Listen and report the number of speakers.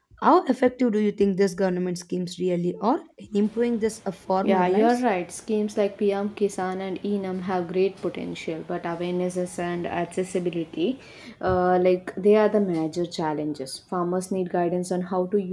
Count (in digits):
2